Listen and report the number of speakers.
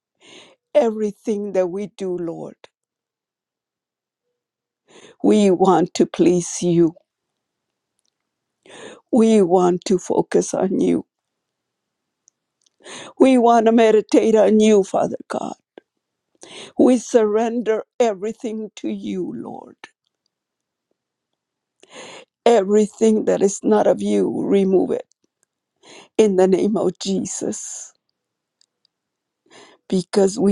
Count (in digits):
1